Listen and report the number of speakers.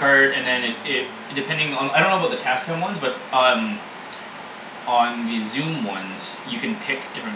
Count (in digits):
1